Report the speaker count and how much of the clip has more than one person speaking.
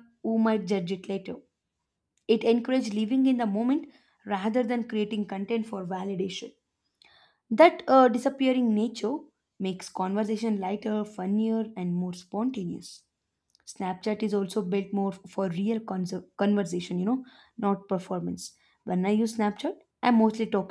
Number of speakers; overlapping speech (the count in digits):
1, no overlap